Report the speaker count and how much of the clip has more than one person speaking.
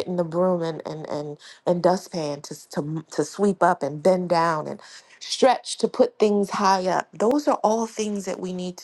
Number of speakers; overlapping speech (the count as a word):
one, no overlap